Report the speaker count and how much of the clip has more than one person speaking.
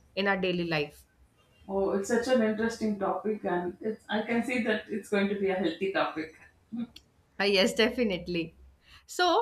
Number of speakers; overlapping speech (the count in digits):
2, no overlap